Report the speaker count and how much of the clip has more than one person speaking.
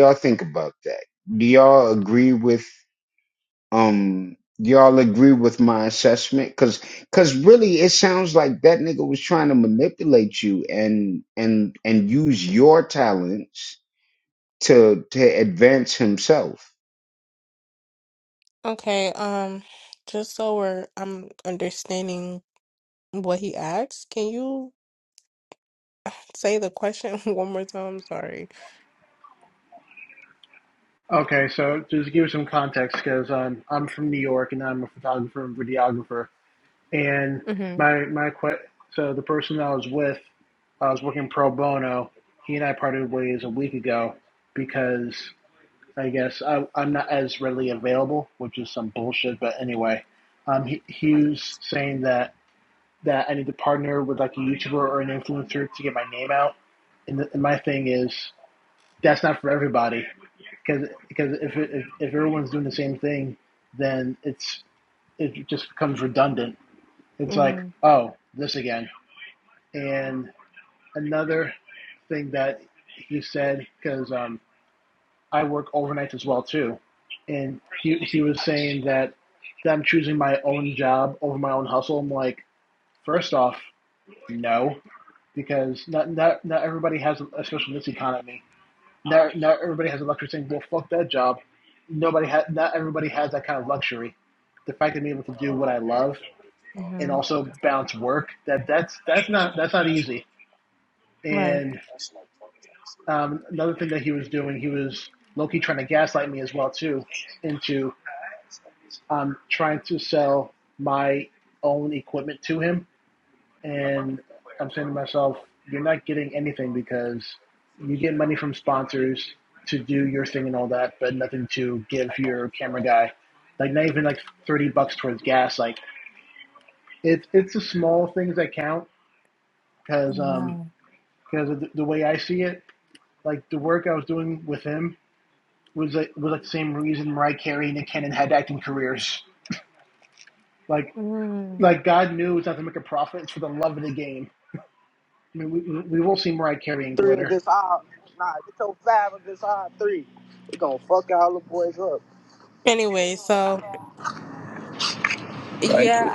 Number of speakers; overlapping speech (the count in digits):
4, about 1%